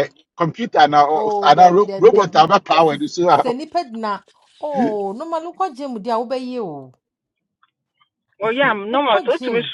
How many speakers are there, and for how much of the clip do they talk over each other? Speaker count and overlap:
three, about 22%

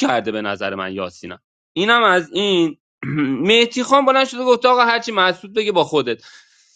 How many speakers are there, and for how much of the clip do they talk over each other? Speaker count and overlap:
one, no overlap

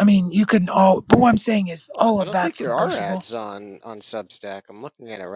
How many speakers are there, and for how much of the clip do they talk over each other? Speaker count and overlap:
two, about 19%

